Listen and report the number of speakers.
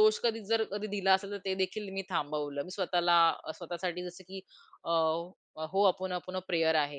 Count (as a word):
one